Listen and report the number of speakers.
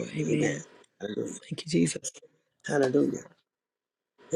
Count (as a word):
two